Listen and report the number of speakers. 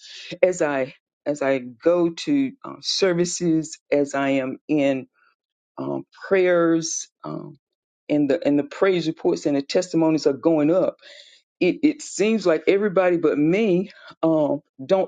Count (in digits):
1